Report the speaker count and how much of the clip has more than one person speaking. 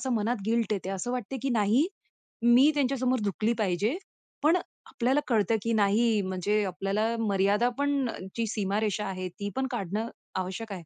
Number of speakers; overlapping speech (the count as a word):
one, no overlap